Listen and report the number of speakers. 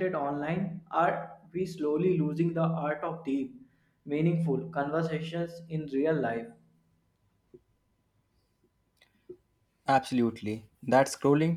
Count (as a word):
two